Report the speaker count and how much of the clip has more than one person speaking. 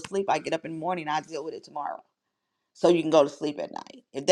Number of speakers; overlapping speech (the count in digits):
1, no overlap